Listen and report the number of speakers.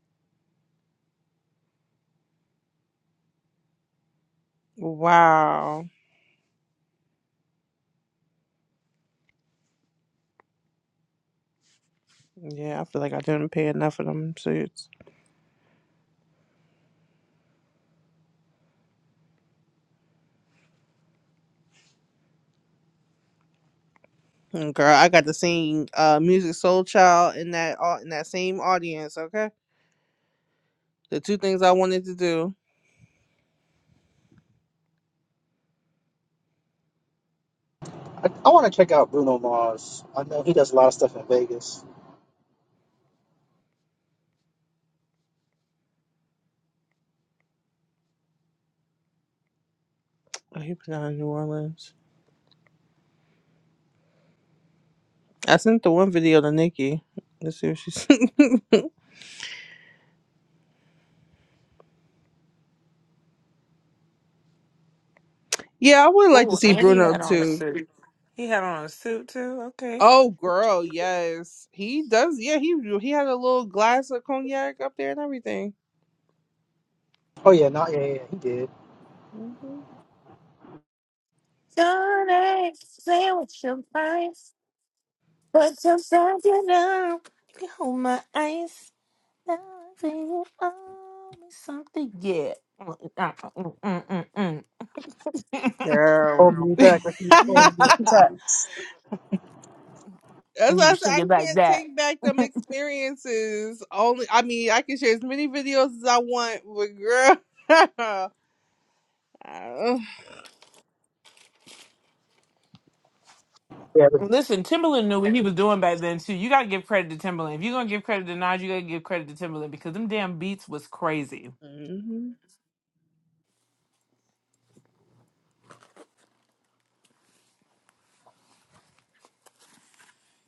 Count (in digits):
3